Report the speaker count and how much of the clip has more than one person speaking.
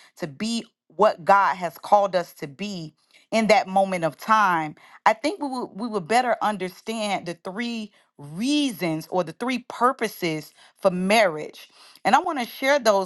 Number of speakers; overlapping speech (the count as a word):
one, no overlap